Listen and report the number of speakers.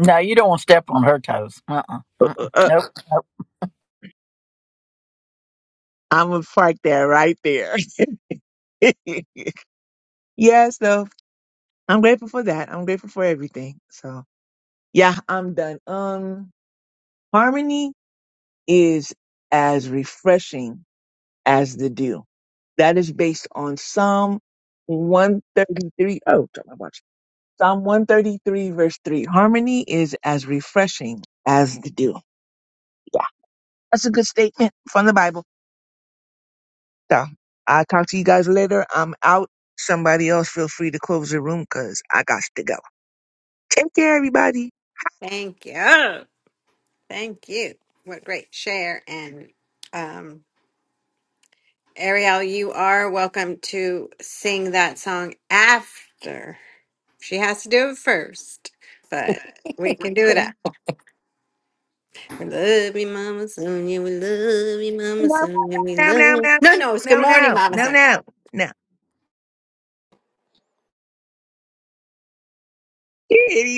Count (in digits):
3